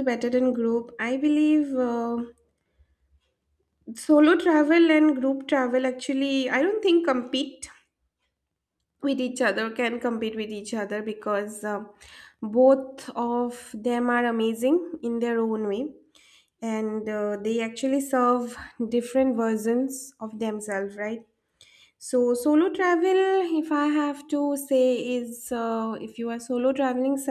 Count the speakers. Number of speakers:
one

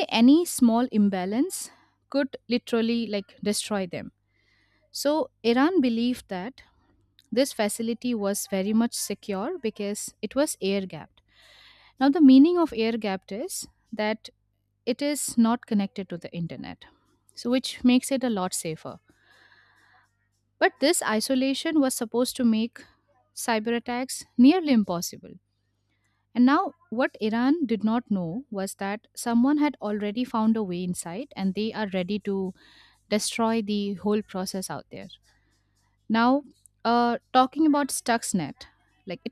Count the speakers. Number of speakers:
one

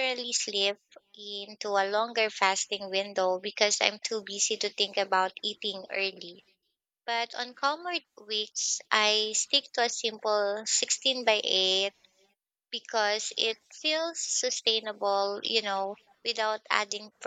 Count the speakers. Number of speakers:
one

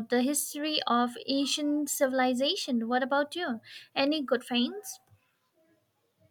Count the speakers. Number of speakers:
one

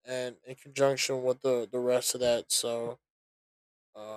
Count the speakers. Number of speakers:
one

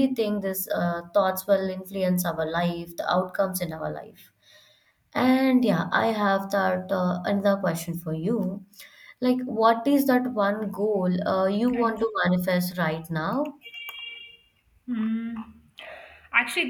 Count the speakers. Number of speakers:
two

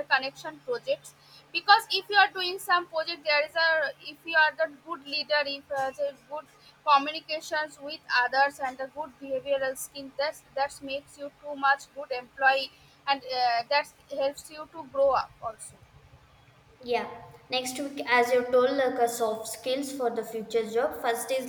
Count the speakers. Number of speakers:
two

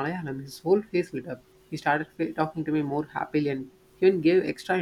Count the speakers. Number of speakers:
one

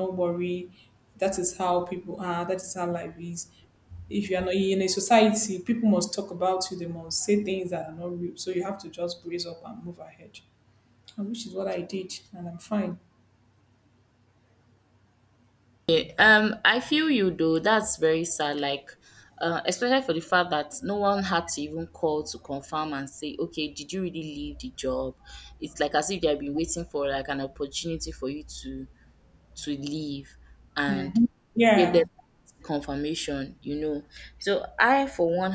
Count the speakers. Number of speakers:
two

